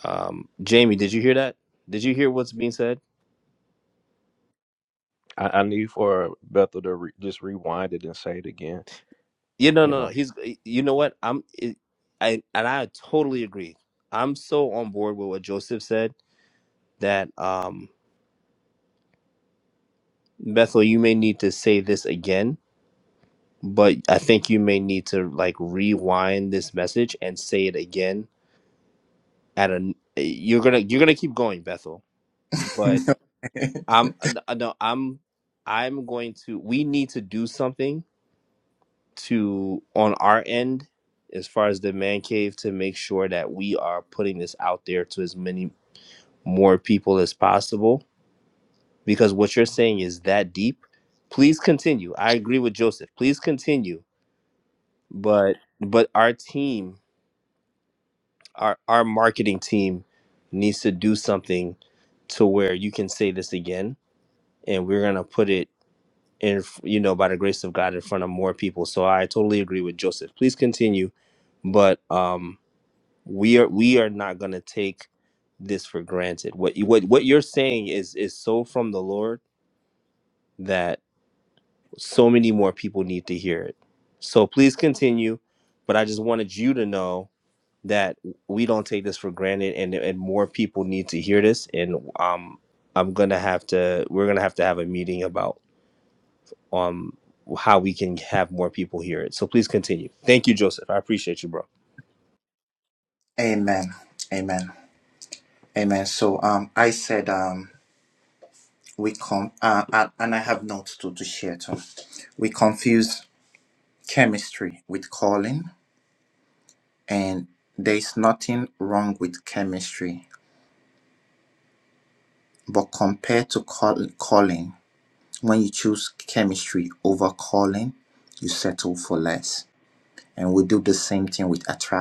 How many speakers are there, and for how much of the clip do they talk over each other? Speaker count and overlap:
3, under 1%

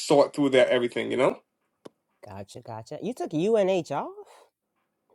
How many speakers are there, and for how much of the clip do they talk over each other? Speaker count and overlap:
2, no overlap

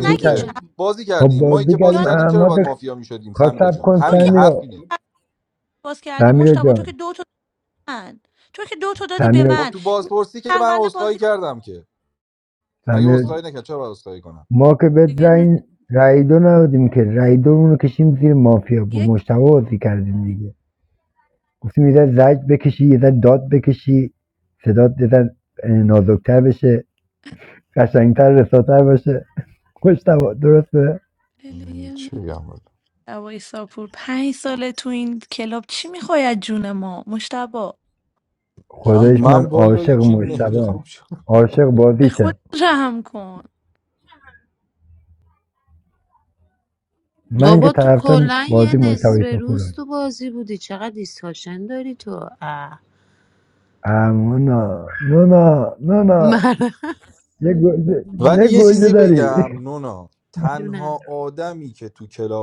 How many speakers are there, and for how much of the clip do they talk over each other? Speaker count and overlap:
4, about 22%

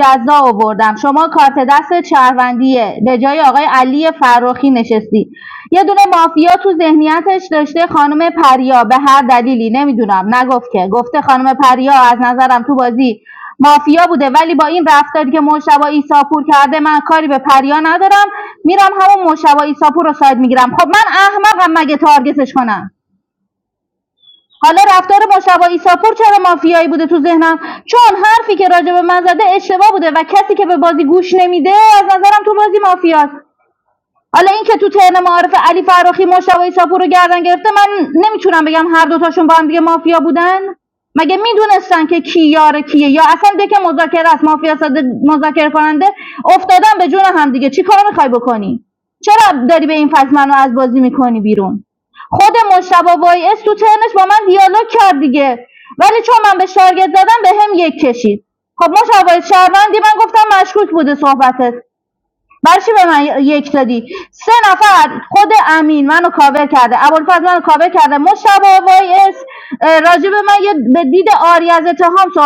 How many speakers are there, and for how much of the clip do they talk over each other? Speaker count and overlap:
1, no overlap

